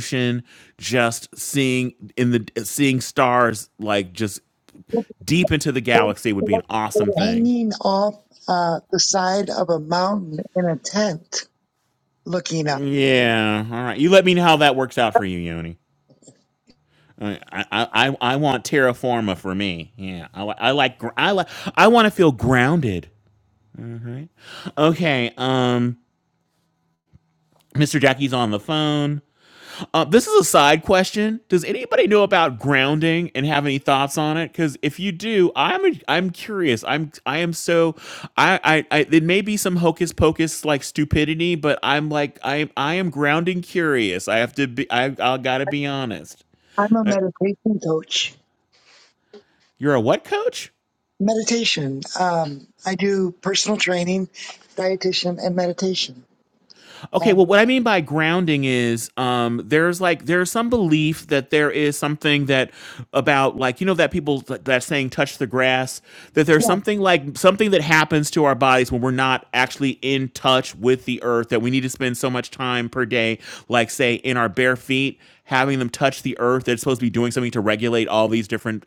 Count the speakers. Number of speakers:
2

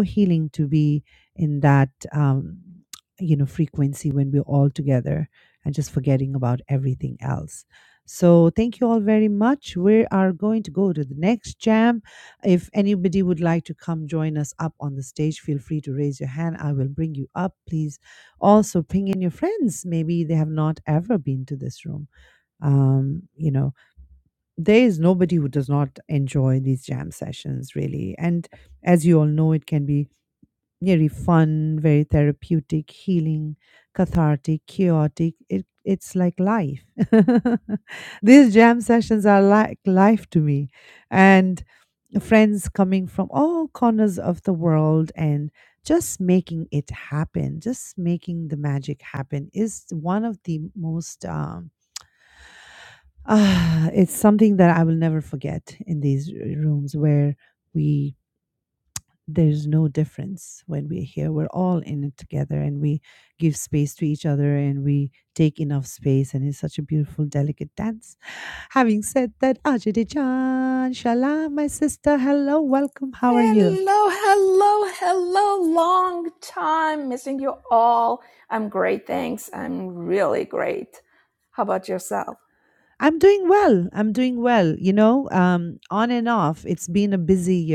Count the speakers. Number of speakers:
2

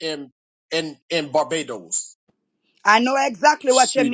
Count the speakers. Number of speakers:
2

